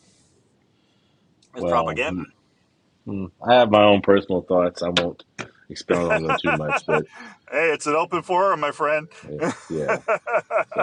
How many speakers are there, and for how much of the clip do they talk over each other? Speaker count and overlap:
two, about 1%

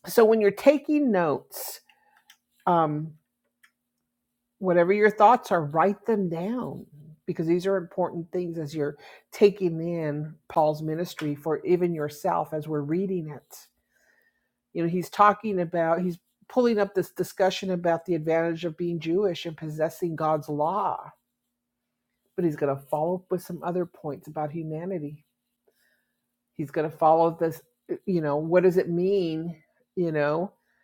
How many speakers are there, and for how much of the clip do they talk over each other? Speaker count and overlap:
one, no overlap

